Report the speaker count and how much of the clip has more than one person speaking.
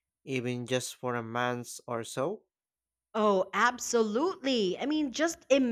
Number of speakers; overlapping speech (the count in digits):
2, no overlap